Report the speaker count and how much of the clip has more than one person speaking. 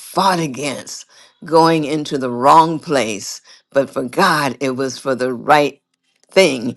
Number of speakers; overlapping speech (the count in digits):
1, no overlap